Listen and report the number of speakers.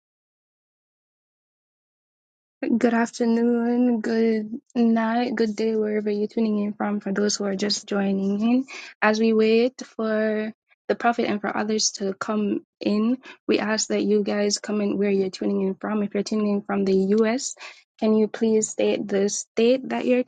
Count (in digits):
1